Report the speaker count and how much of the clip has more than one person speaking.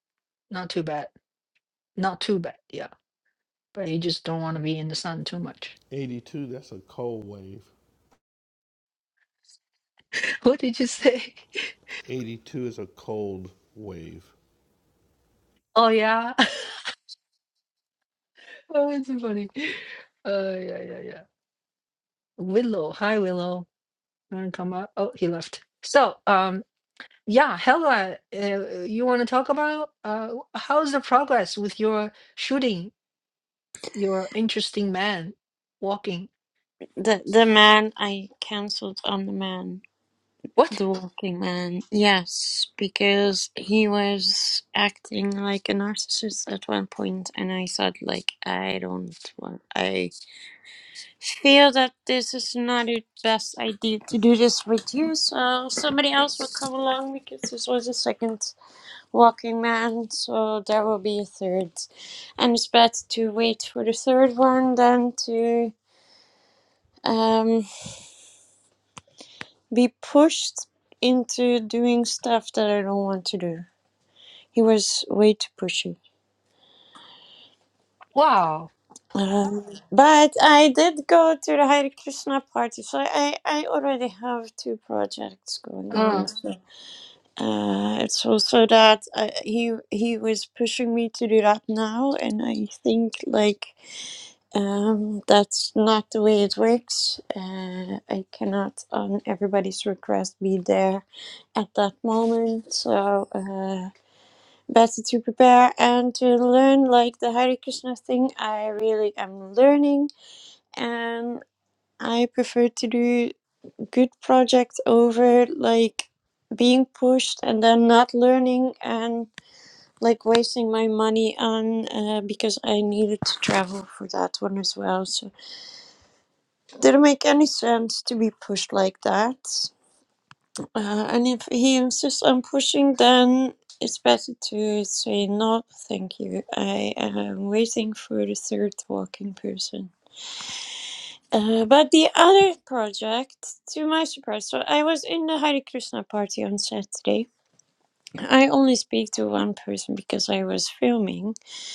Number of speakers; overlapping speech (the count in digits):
3, under 1%